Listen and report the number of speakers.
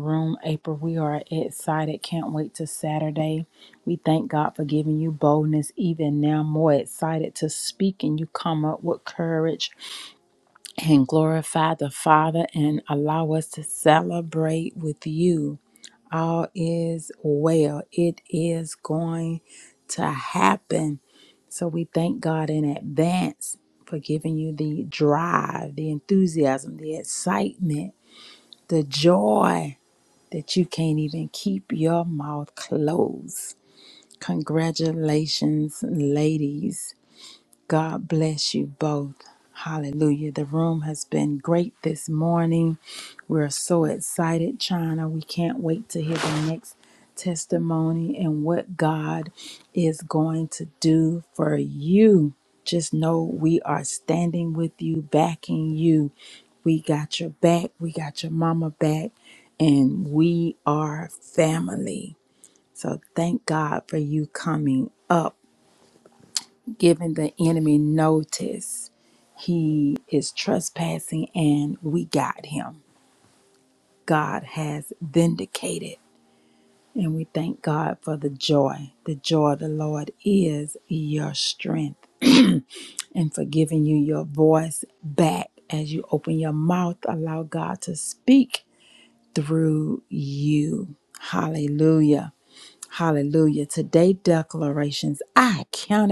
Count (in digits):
1